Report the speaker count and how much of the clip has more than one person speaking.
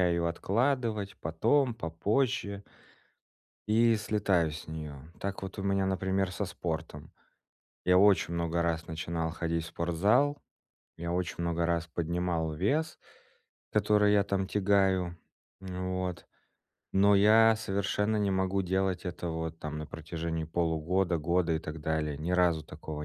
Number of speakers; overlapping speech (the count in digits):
1, no overlap